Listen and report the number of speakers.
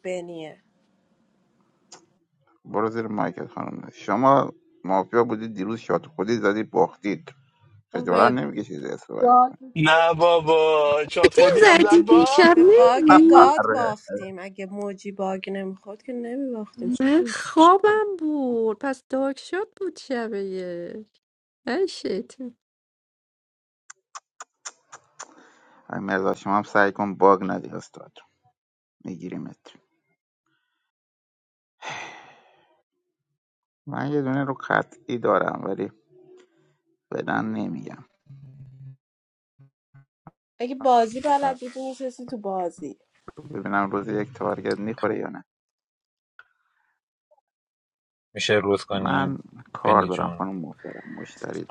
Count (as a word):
five